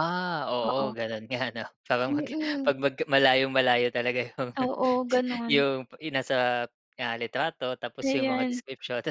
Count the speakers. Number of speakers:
two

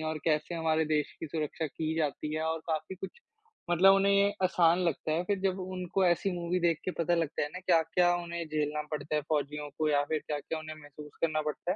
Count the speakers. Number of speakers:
one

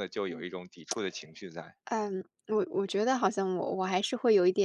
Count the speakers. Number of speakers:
two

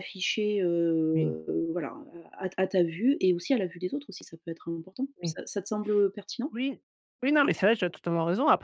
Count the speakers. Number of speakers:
two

